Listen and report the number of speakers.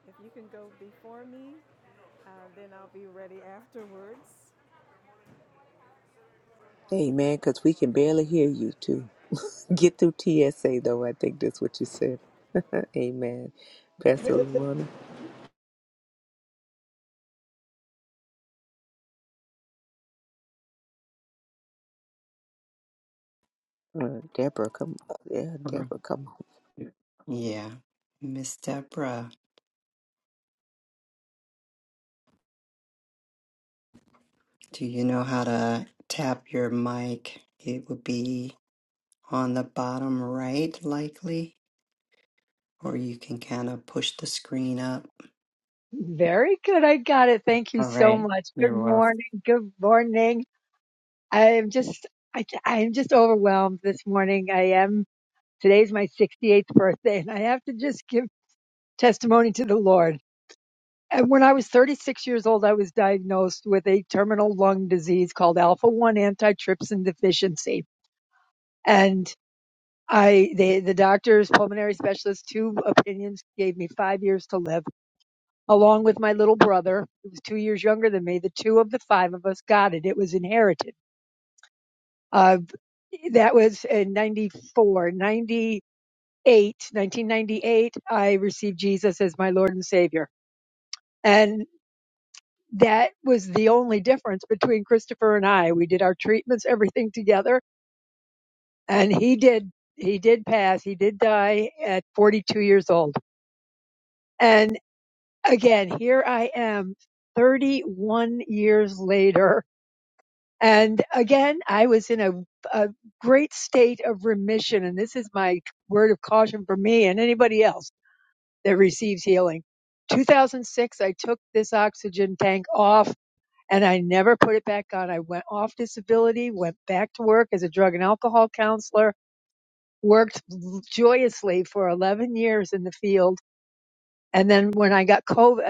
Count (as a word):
four